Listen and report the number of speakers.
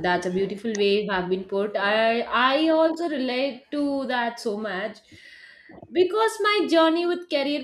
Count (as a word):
one